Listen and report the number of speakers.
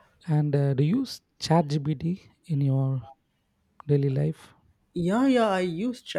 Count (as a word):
two